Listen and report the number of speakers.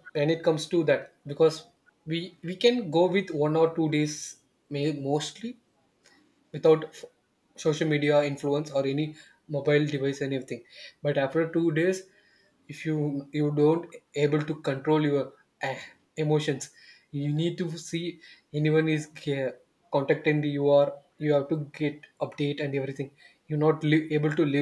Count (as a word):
one